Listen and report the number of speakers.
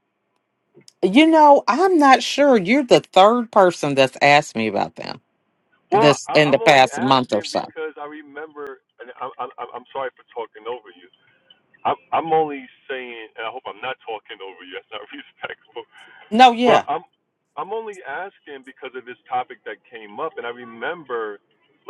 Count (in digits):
2